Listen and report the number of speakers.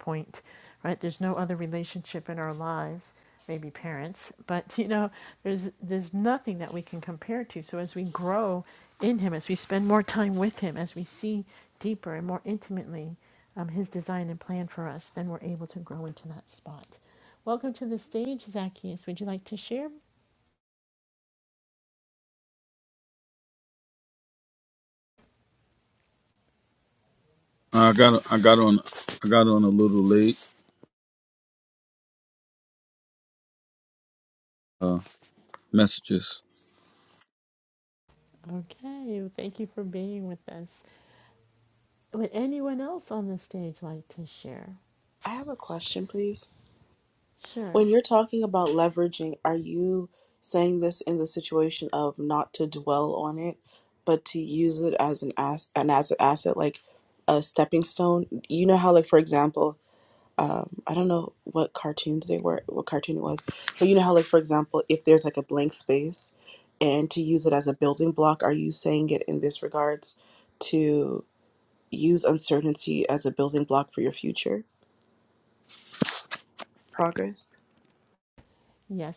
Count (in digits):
3